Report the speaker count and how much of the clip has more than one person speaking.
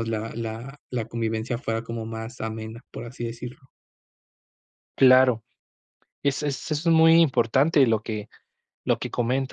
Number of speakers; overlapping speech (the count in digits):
2, no overlap